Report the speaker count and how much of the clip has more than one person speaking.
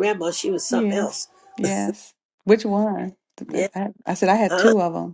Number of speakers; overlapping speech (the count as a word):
two, about 16%